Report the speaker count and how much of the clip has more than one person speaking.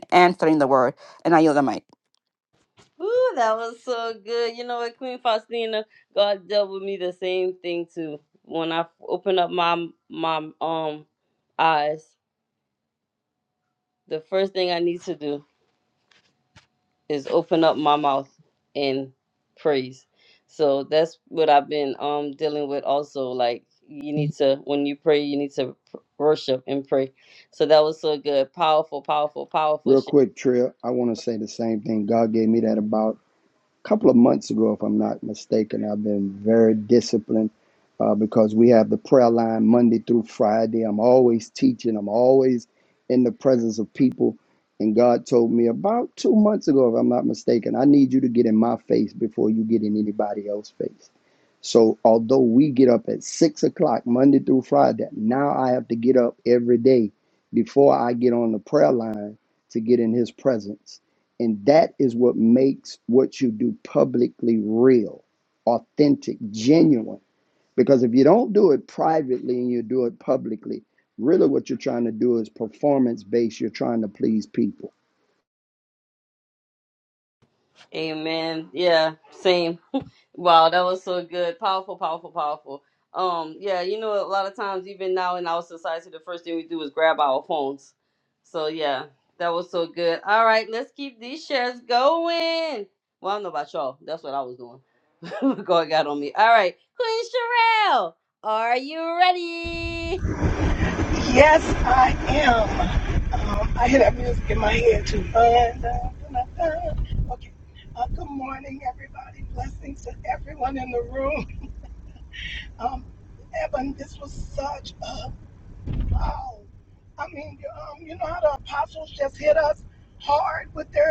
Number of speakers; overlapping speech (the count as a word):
four, under 1%